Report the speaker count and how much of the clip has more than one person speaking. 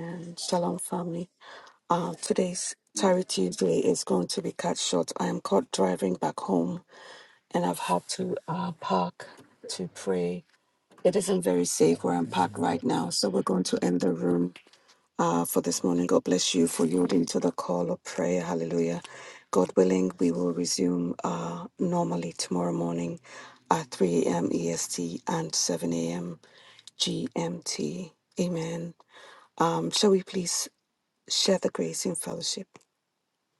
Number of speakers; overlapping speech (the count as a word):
one, no overlap